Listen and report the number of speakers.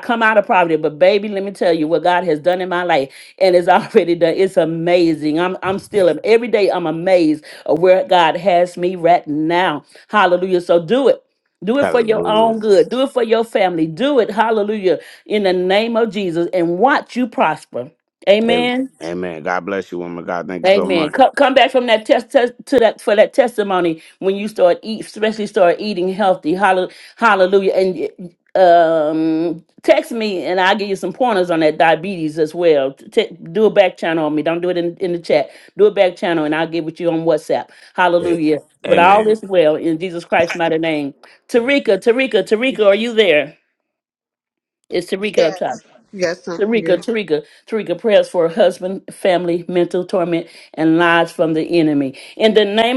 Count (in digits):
3